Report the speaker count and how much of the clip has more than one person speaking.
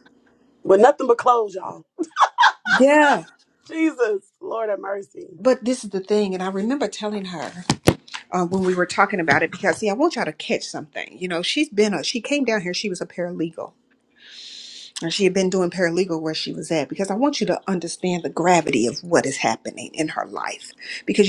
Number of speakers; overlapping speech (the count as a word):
two, no overlap